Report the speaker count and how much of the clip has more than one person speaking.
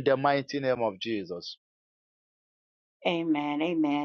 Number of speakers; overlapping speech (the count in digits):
2, no overlap